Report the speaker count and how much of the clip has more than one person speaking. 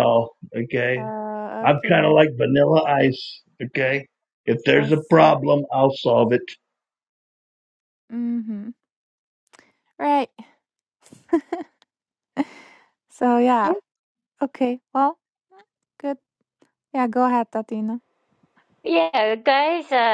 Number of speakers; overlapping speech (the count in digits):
3, about 6%